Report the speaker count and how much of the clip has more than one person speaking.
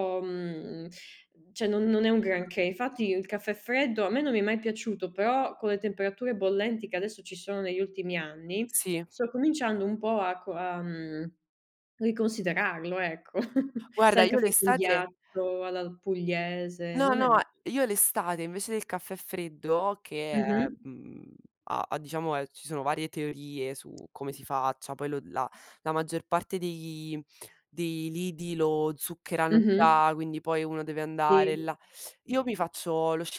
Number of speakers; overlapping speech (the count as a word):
two, about 8%